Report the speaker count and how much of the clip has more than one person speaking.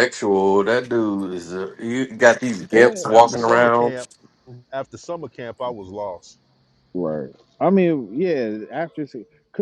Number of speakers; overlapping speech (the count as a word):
three, about 13%